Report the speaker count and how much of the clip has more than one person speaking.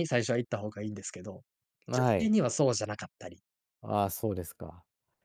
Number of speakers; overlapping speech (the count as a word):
two, about 6%